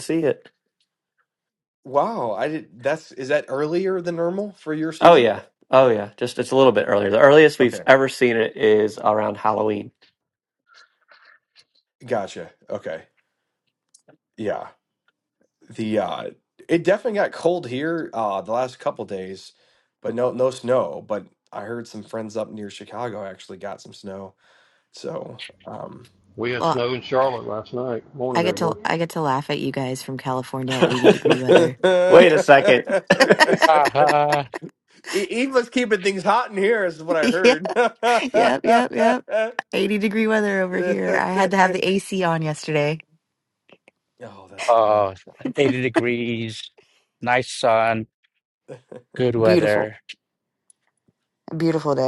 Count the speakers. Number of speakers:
5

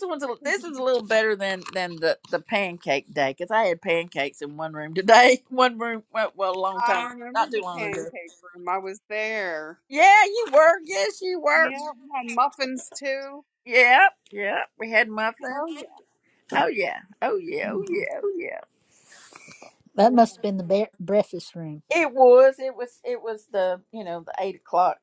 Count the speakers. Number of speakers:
3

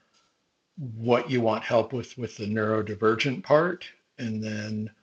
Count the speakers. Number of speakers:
1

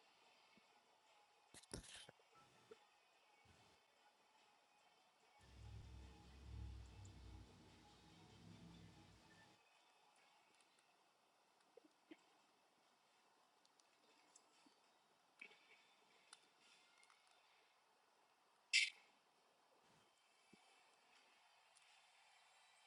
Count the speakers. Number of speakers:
0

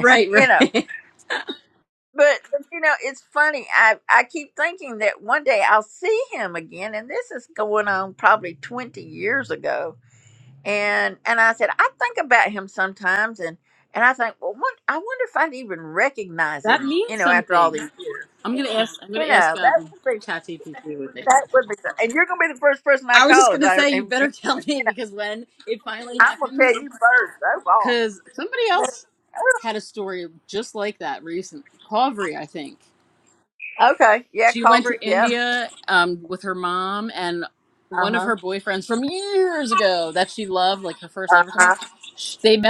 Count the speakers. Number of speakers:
2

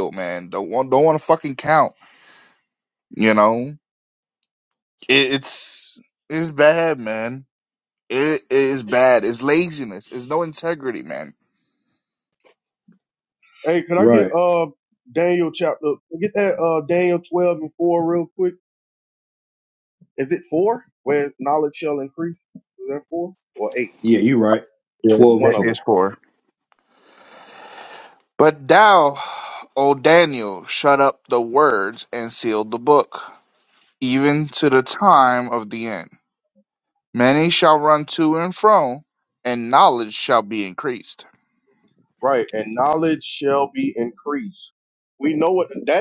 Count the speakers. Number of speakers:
3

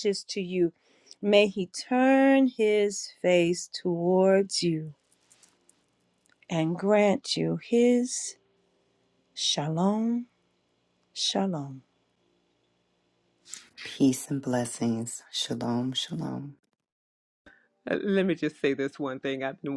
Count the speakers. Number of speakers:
3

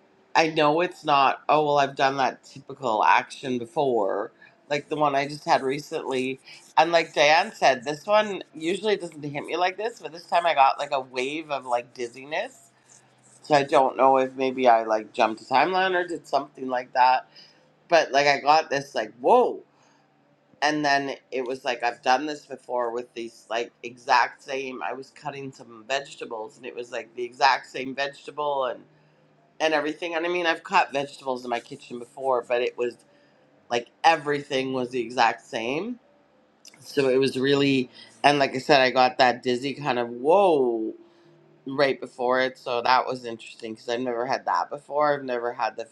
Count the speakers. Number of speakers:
1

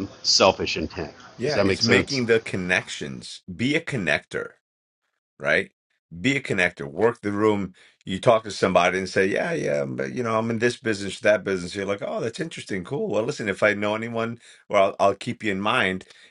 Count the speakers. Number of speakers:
2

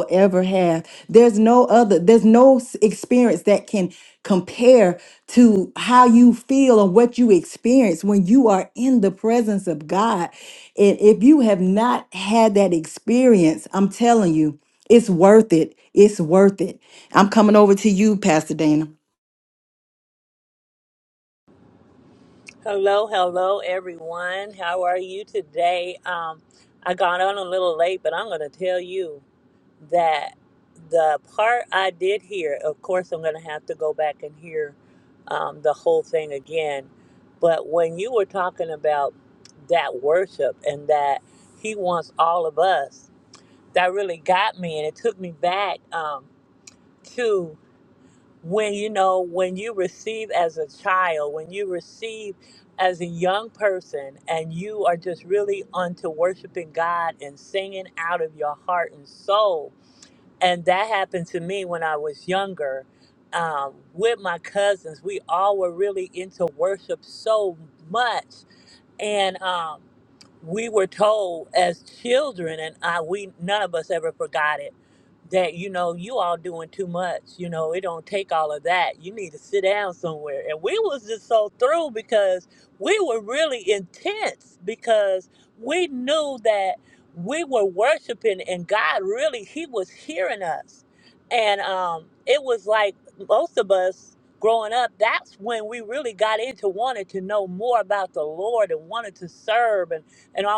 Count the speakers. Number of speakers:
2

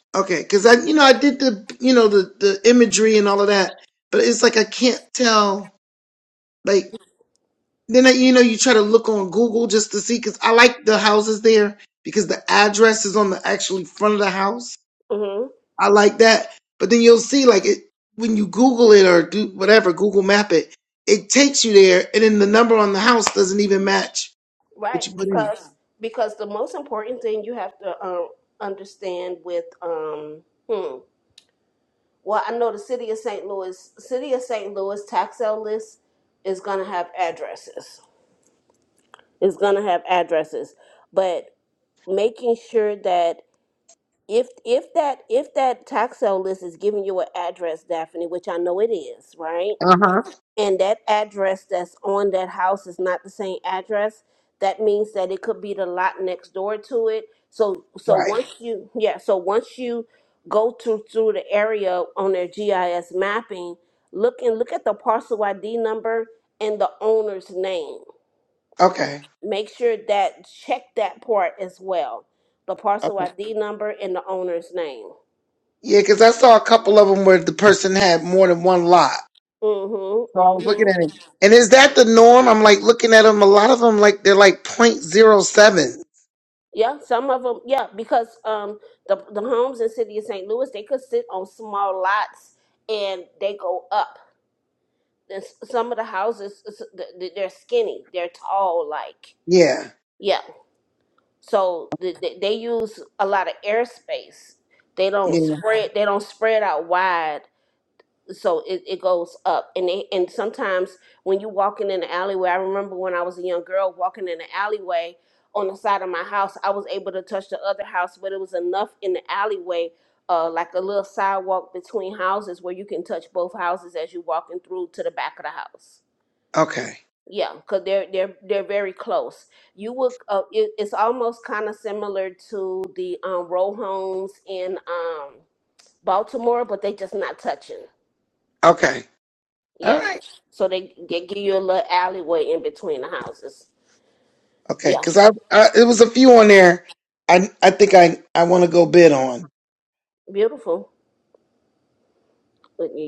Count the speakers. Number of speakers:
2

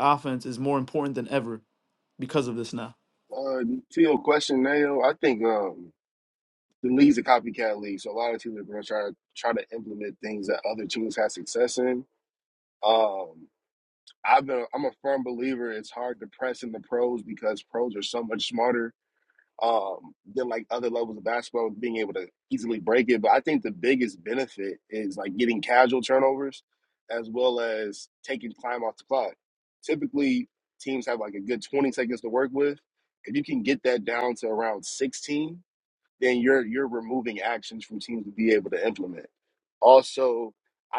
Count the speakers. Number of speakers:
2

